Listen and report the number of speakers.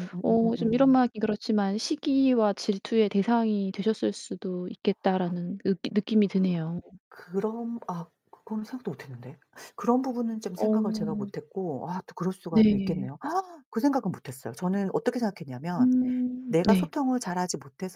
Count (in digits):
2